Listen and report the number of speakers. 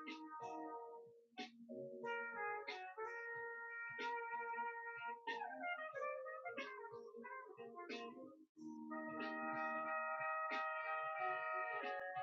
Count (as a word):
zero